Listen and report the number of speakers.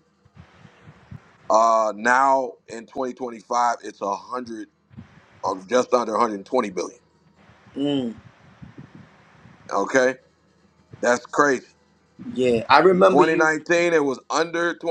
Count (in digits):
2